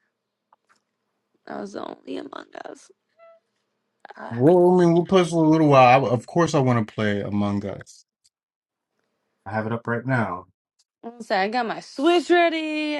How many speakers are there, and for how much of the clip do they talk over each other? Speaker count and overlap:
2, about 1%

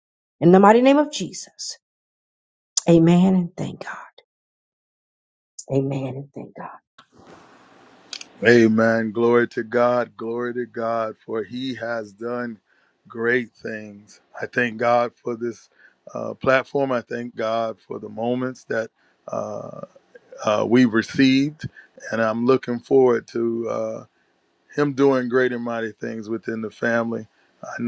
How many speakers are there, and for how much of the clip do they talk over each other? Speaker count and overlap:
2, no overlap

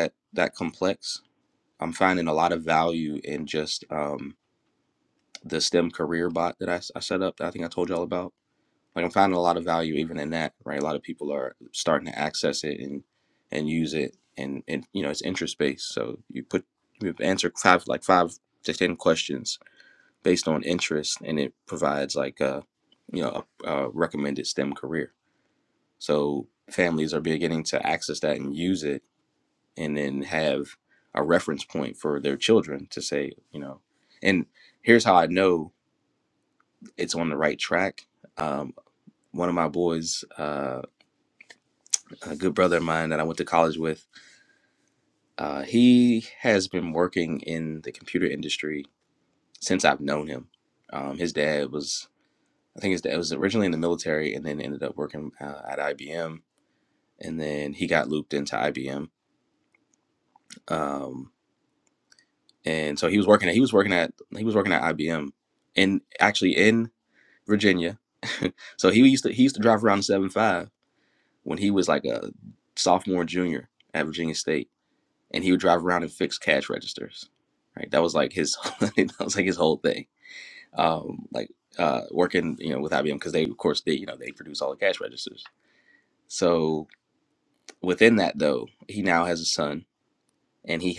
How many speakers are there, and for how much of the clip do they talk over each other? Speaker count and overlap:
1, no overlap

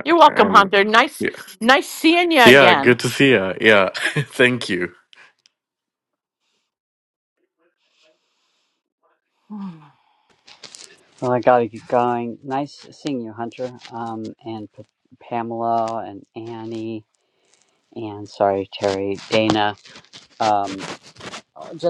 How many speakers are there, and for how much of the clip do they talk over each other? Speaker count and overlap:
3, about 5%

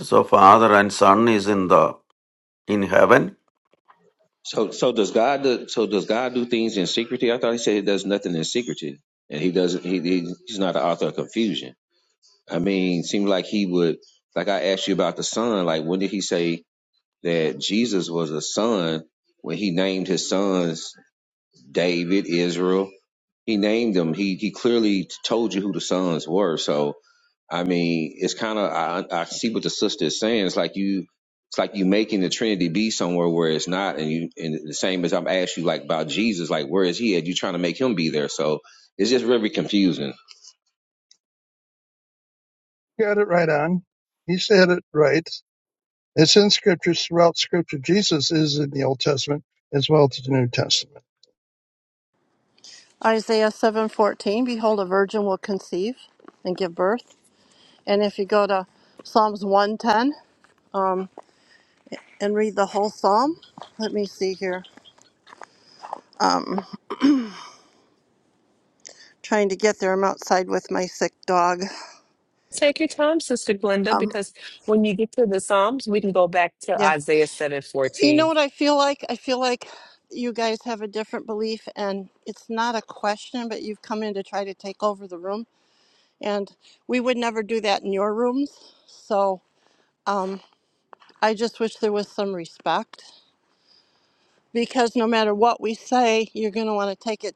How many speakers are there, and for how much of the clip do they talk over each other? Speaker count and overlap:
5, about 1%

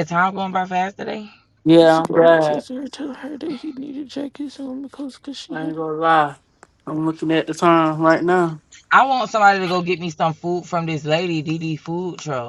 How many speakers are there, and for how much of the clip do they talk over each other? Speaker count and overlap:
3, about 8%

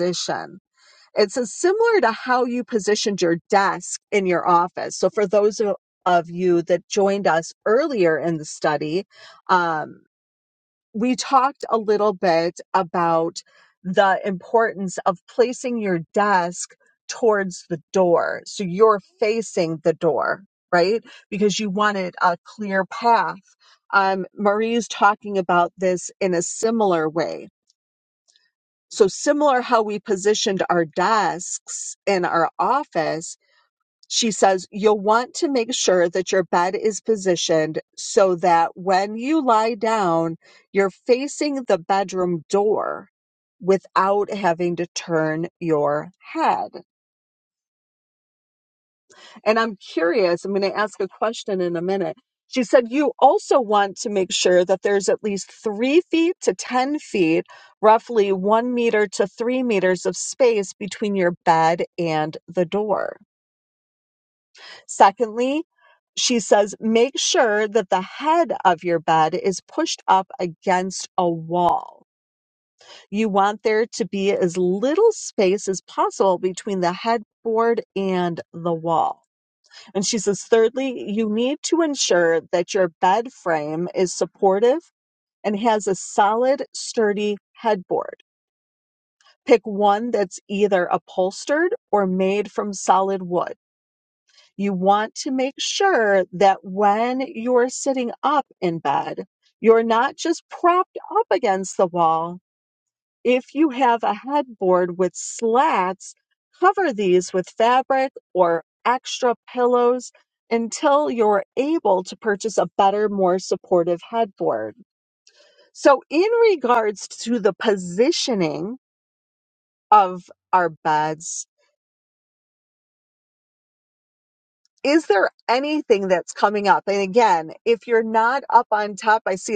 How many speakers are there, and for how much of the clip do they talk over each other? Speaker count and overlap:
1, no overlap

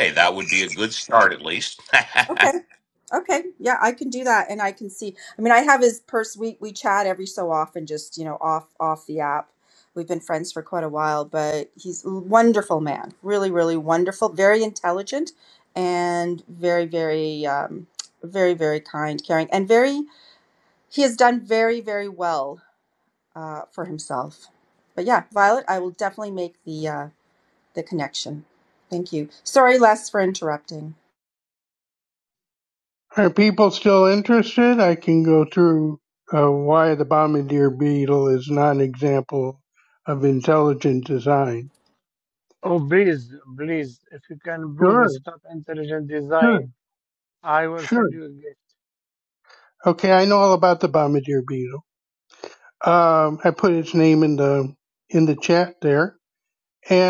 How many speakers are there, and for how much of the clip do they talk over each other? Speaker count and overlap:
4, about 2%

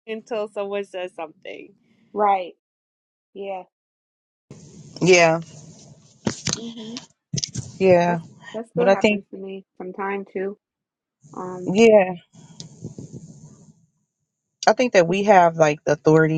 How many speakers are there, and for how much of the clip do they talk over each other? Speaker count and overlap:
3, about 4%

